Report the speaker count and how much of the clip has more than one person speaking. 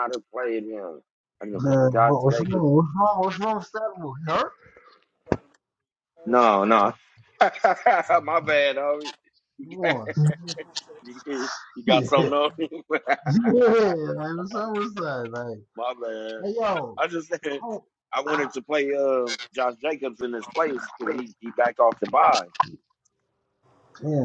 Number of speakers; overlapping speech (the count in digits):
2, about 7%